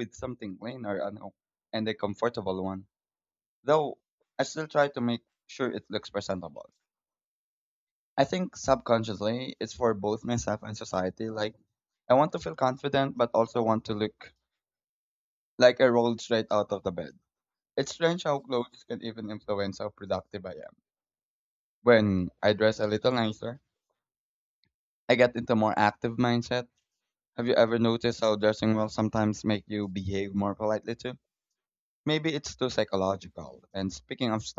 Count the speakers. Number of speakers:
one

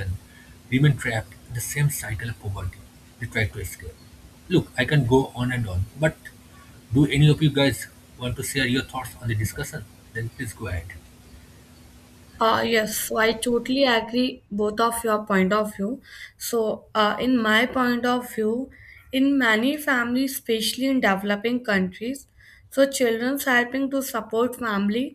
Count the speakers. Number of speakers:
two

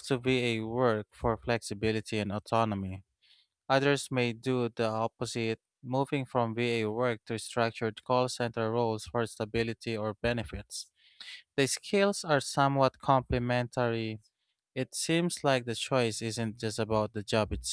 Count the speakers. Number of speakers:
one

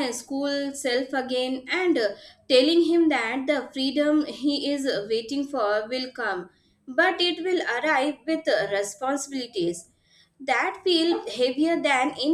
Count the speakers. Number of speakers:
one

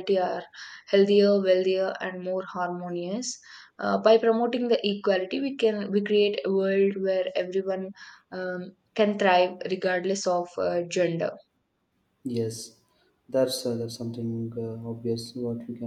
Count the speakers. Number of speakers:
two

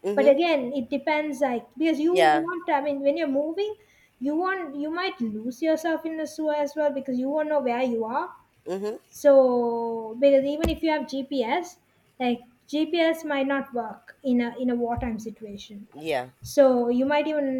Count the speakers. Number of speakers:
two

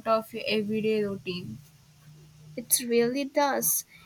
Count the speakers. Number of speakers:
two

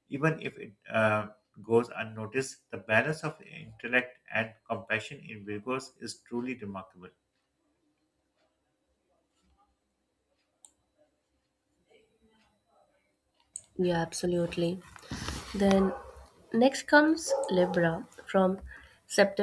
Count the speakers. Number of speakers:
two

